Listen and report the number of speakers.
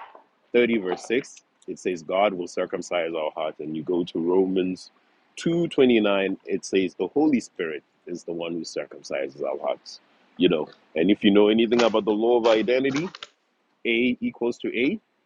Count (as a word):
one